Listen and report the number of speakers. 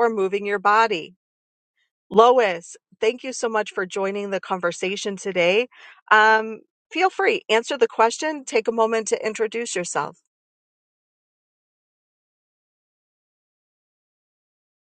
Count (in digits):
1